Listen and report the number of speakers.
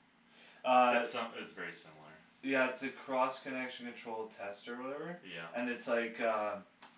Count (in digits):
2